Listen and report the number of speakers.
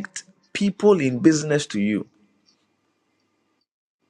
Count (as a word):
one